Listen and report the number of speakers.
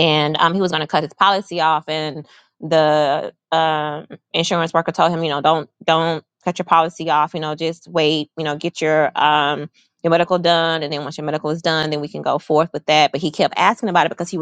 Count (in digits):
1